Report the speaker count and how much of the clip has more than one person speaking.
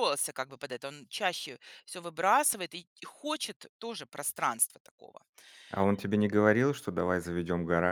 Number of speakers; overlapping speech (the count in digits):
2, no overlap